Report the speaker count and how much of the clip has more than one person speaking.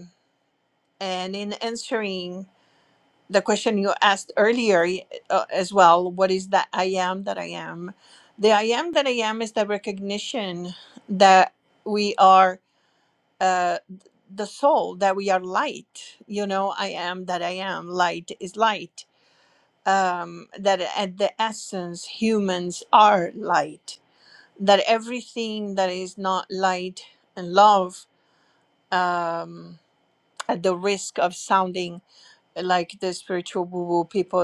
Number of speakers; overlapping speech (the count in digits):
1, no overlap